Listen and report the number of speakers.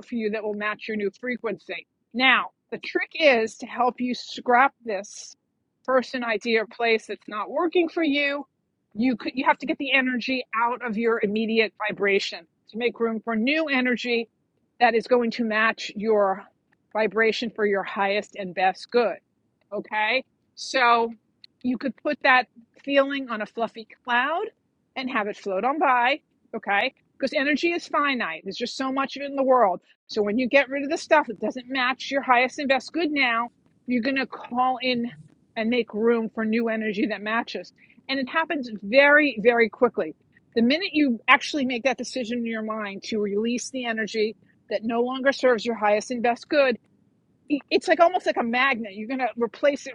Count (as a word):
one